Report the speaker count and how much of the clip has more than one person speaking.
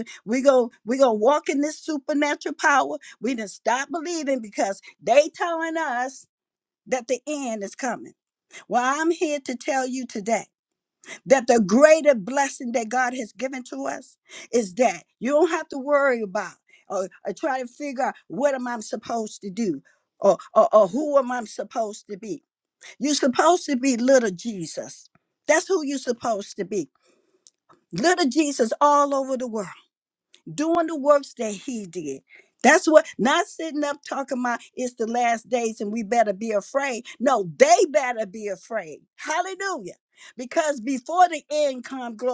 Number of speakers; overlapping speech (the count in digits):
1, no overlap